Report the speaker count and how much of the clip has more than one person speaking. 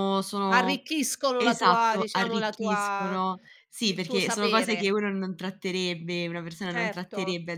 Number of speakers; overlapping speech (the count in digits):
2, about 49%